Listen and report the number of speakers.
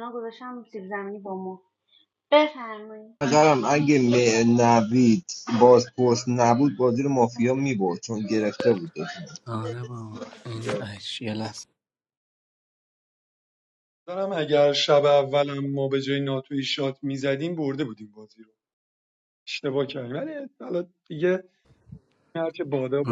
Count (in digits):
4